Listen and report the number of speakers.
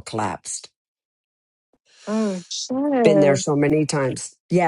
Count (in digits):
2